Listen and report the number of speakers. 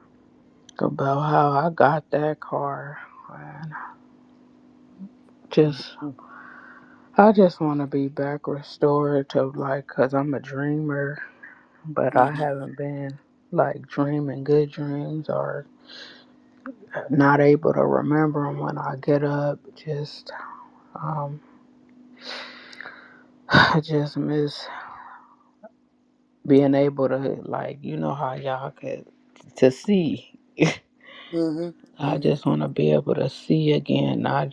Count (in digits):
2